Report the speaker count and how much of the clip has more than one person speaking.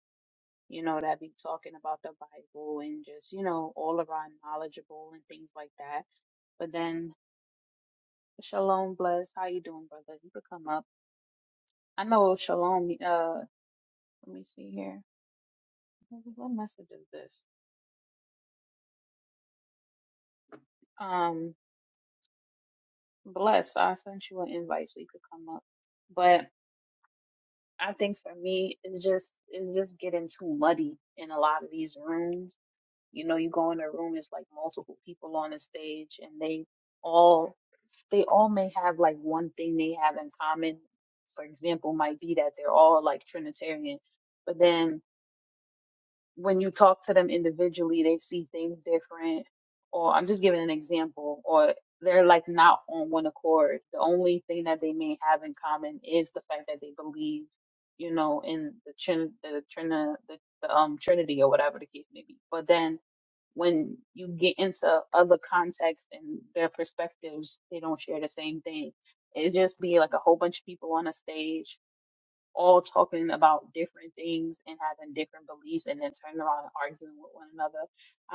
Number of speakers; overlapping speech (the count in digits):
1, no overlap